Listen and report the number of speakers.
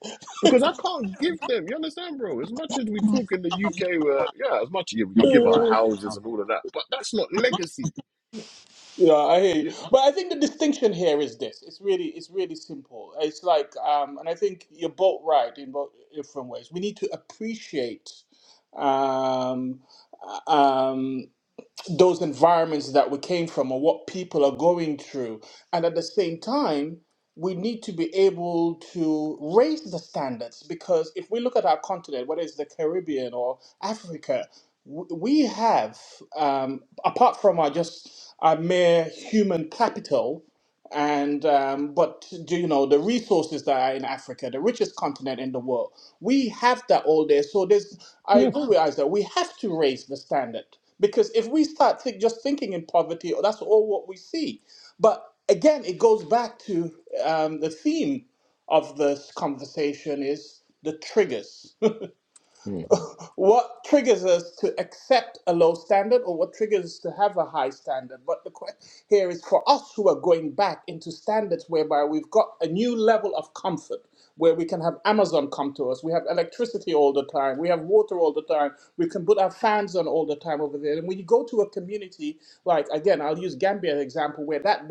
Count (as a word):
two